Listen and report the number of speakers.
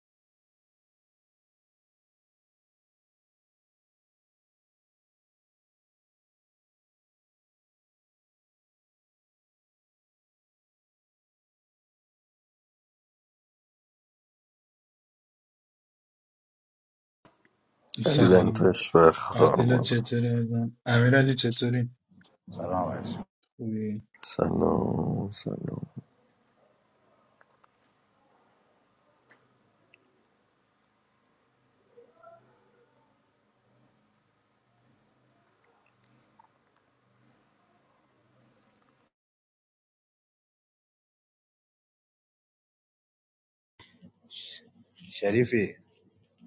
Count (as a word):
three